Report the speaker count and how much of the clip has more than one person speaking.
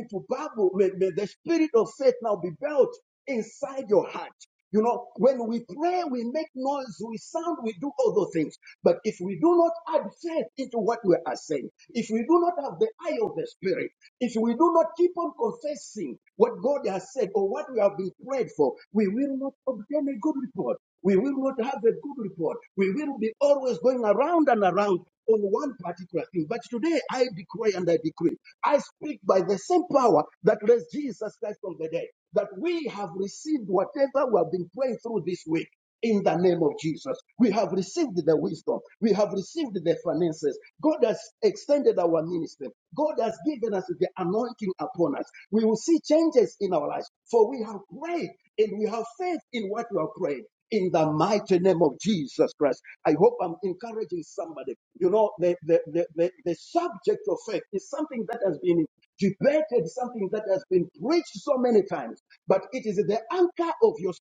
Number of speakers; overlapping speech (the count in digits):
1, no overlap